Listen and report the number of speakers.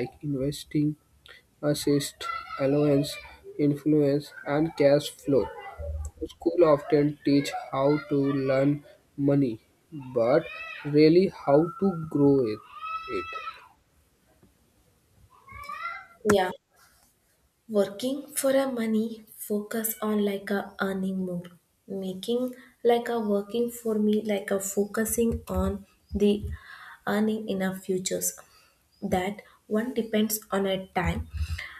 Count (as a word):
two